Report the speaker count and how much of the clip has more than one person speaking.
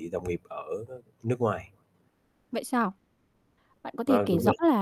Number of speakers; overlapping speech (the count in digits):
2, about 10%